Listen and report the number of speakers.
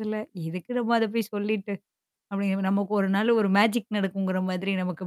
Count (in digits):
1